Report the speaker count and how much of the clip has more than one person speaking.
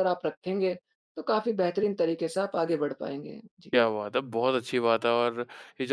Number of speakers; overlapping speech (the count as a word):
two, no overlap